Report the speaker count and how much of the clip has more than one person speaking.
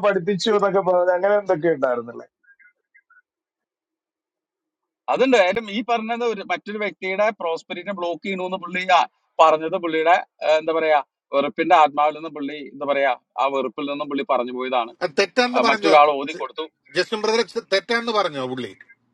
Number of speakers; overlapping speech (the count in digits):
3, about 3%